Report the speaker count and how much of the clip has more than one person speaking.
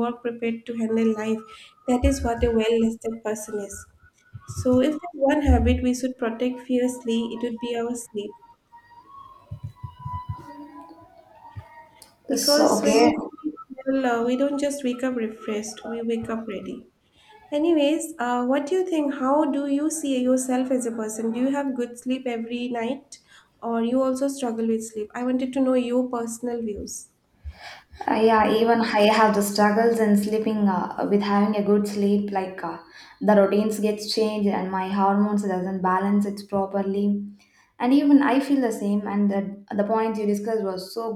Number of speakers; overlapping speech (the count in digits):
2, about 2%